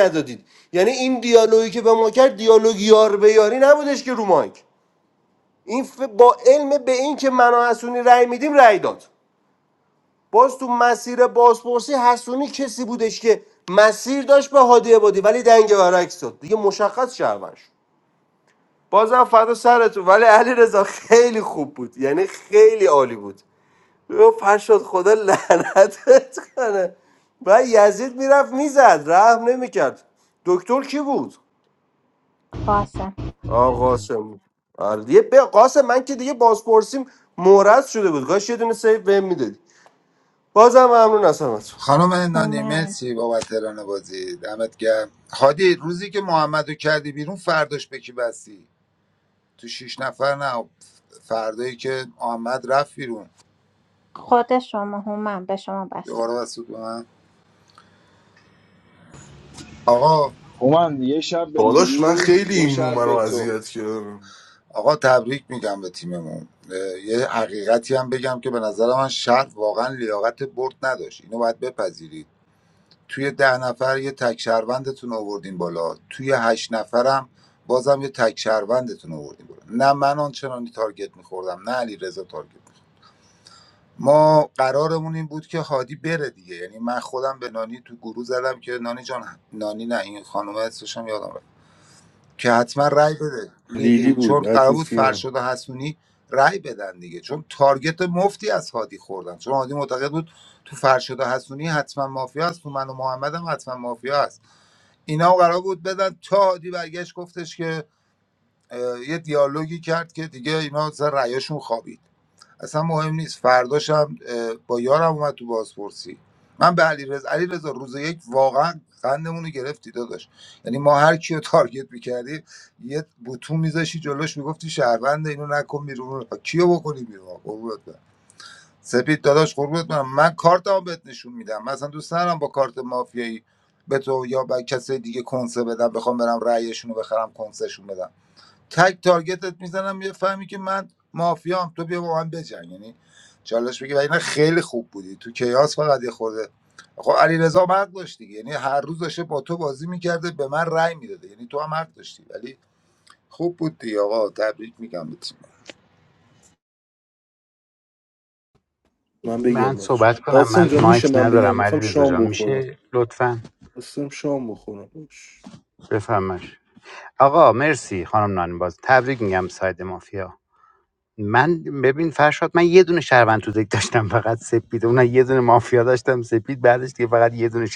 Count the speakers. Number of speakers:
six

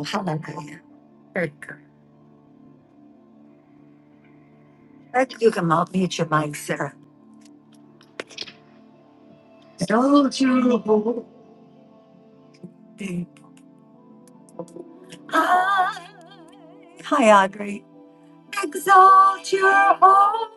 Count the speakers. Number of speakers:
one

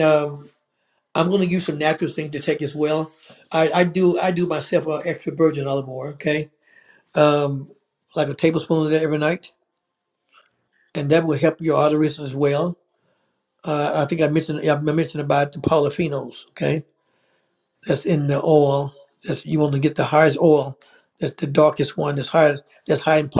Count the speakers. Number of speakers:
one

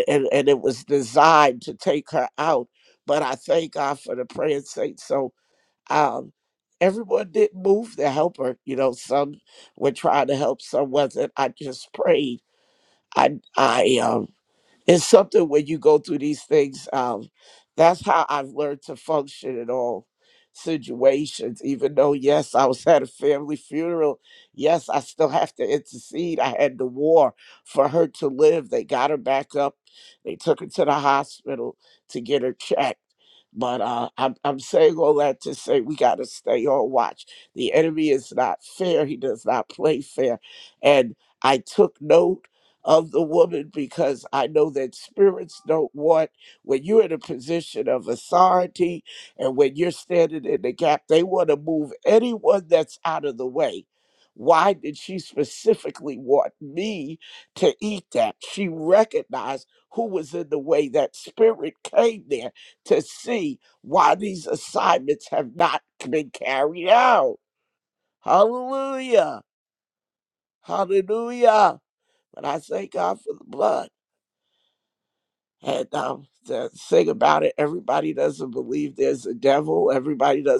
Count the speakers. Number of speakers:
one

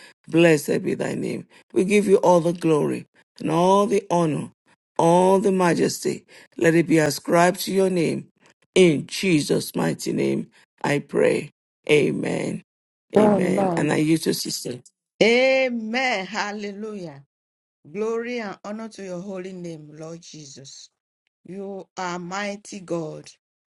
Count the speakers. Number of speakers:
two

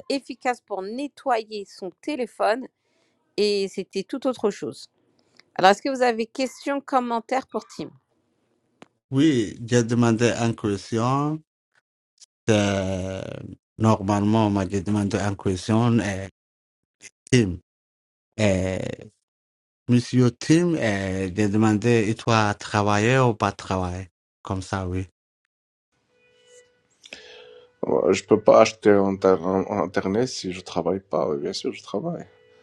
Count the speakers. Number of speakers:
three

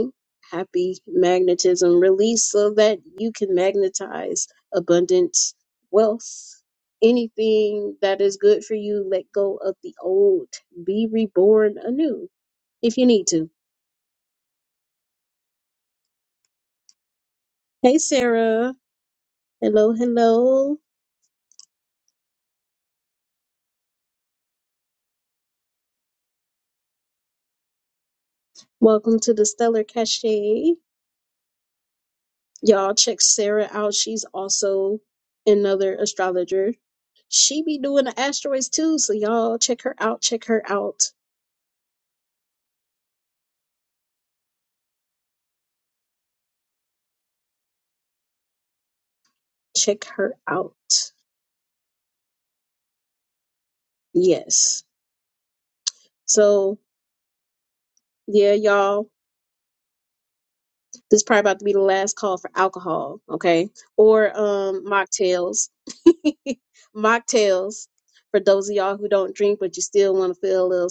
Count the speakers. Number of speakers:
one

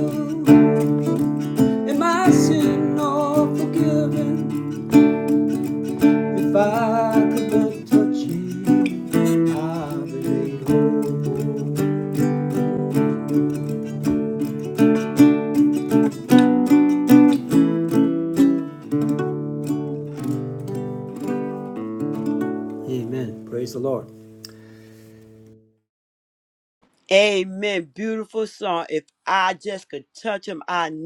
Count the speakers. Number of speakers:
two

